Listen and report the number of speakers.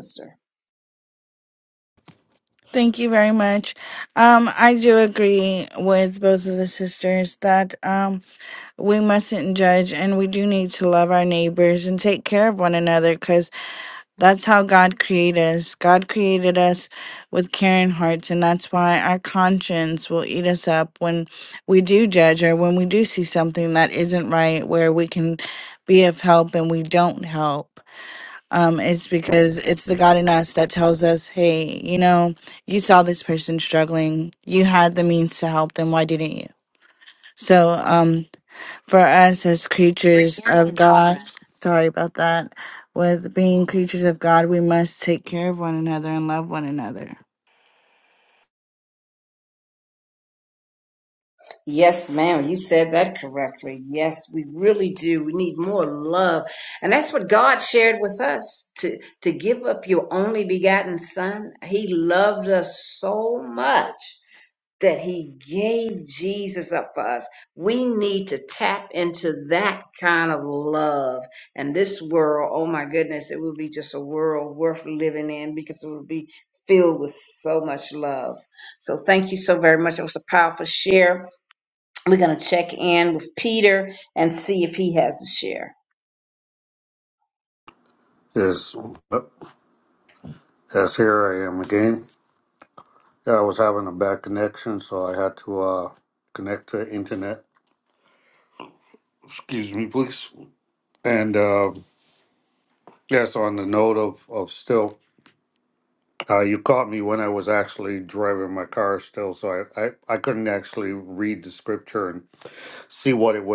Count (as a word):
three